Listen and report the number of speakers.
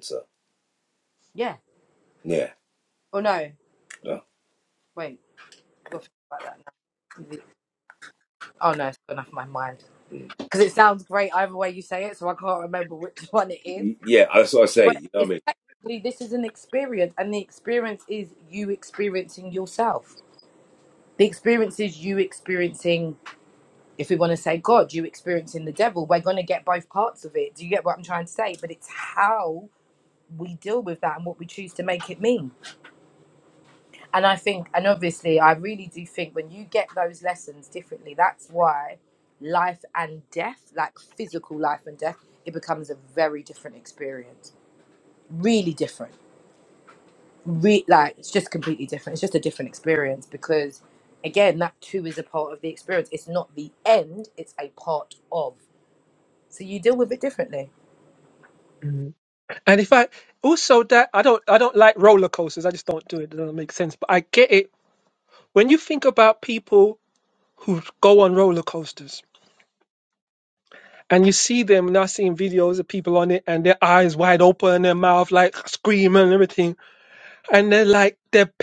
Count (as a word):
three